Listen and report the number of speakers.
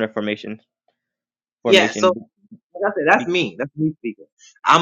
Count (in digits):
2